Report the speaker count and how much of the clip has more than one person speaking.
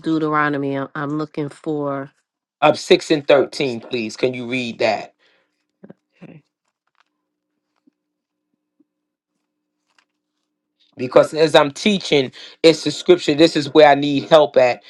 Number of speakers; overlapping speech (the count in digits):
2, no overlap